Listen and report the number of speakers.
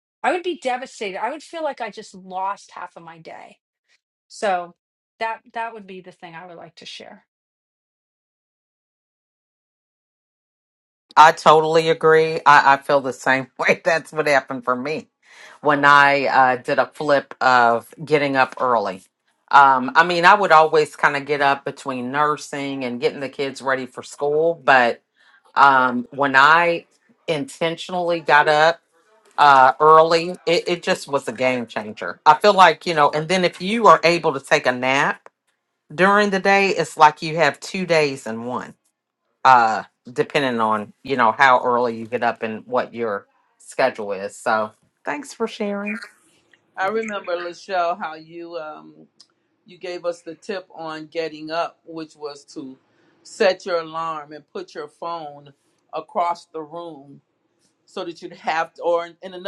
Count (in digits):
3